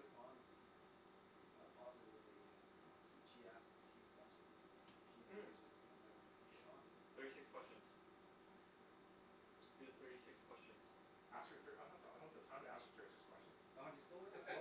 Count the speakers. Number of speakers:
3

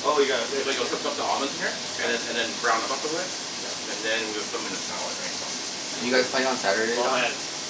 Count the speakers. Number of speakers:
3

